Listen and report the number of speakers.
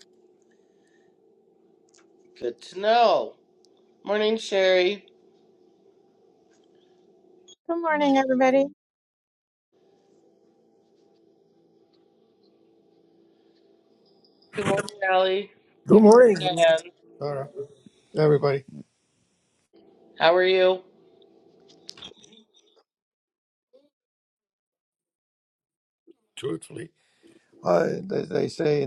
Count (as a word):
three